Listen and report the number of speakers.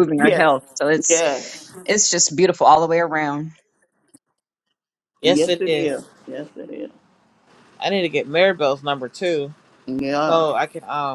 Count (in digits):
3